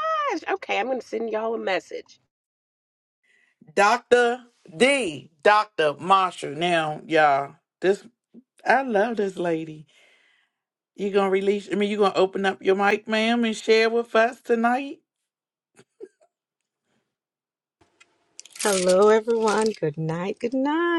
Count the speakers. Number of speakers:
3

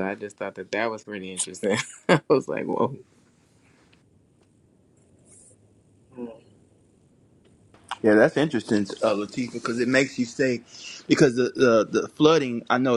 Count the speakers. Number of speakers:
2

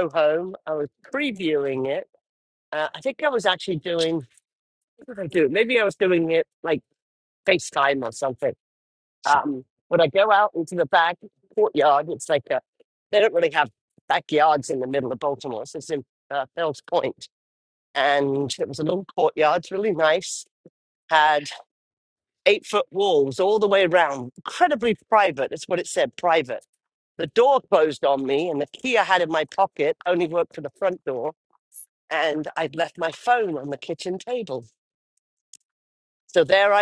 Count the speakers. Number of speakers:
1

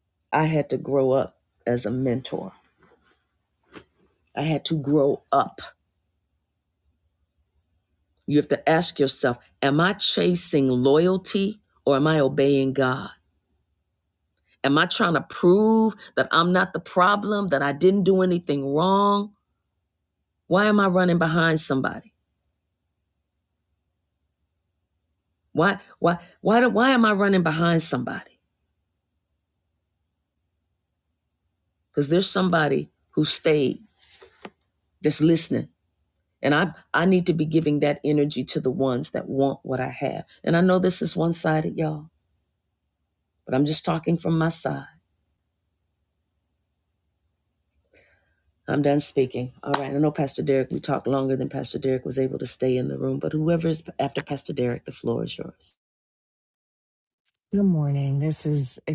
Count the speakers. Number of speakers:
2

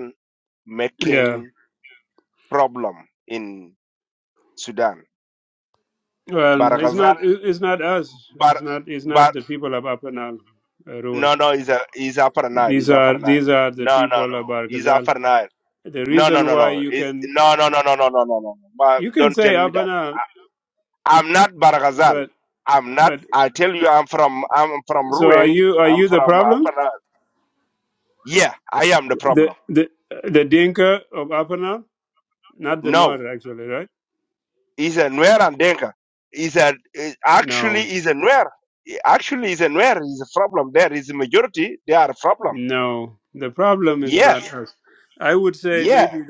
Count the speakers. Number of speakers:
2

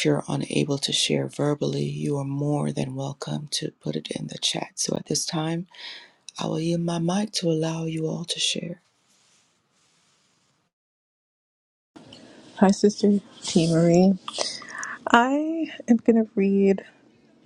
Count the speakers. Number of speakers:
2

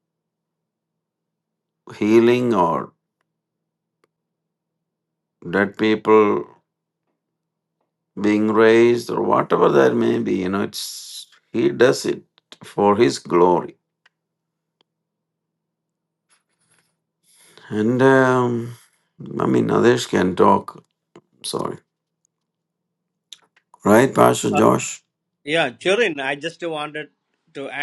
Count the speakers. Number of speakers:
2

